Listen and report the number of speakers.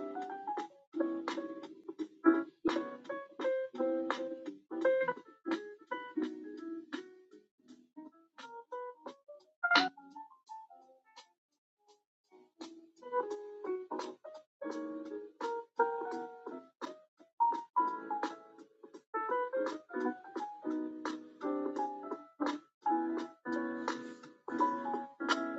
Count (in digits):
0